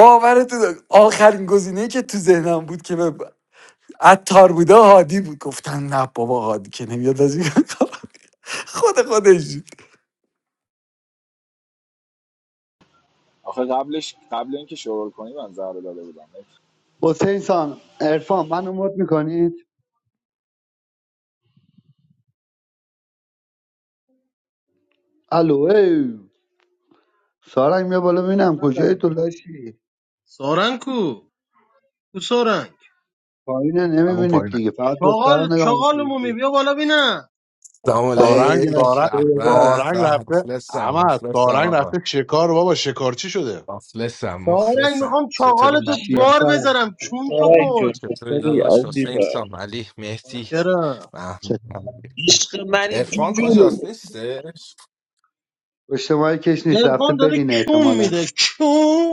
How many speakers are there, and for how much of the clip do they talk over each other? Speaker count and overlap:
seven, about 21%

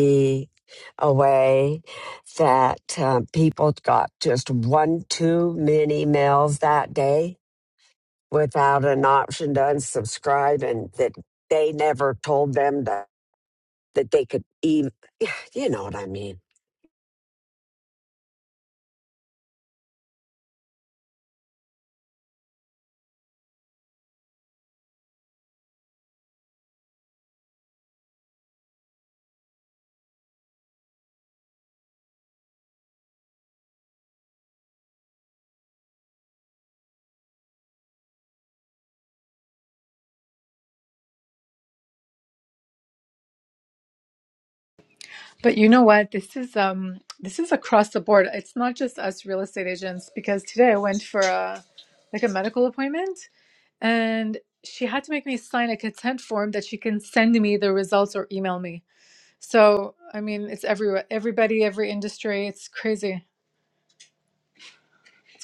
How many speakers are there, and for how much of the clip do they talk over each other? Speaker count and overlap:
two, no overlap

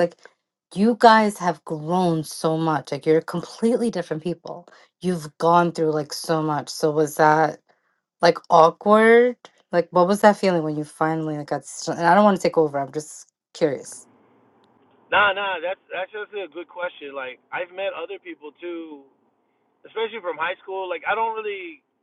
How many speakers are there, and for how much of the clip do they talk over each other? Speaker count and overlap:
two, no overlap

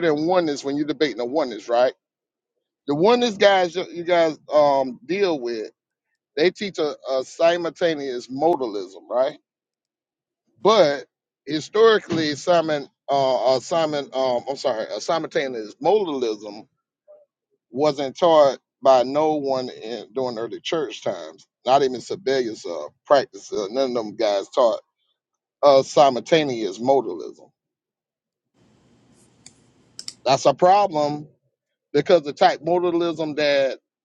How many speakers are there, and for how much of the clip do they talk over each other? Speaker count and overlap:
one, no overlap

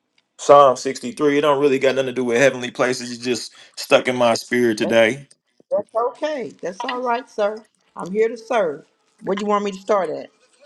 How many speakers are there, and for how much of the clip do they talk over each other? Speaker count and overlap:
two, about 1%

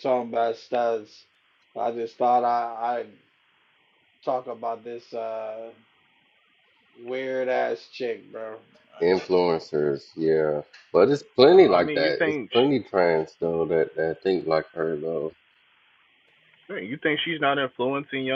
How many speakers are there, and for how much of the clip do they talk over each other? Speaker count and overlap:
three, about 5%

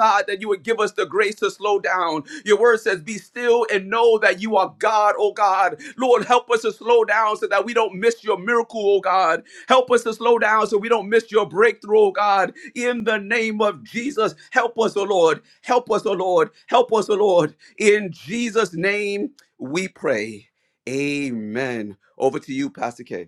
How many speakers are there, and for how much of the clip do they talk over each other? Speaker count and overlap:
one, no overlap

